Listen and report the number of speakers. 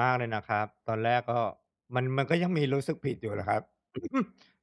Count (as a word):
one